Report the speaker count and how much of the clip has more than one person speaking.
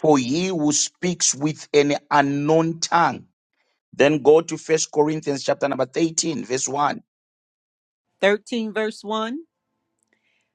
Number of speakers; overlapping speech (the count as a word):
two, no overlap